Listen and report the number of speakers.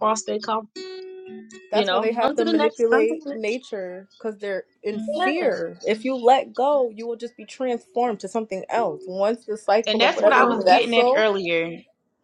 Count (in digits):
3